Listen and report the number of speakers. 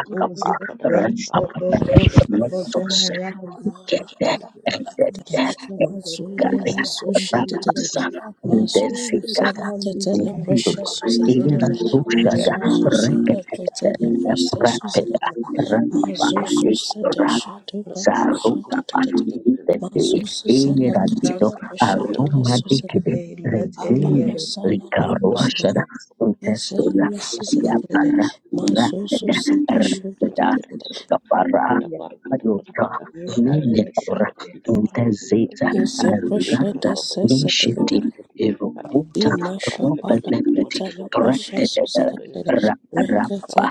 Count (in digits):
4